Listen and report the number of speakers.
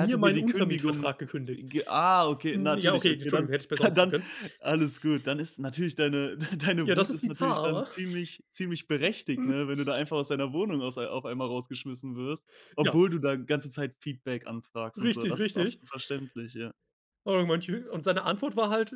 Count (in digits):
2